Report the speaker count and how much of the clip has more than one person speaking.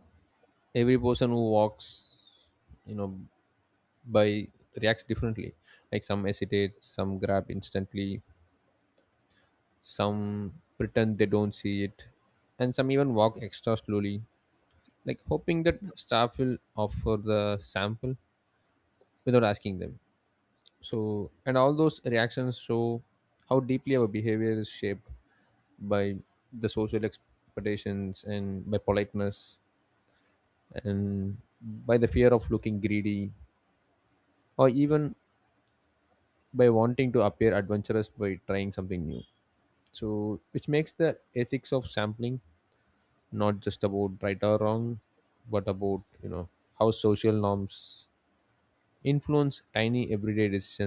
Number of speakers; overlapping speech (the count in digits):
1, no overlap